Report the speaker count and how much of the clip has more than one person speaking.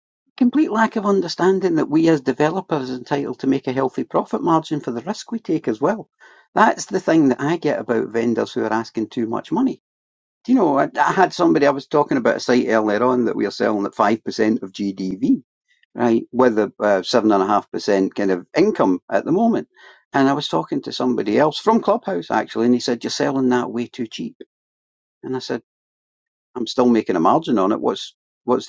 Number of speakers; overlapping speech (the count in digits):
1, no overlap